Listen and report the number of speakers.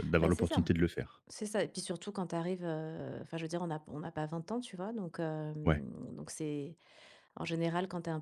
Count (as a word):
two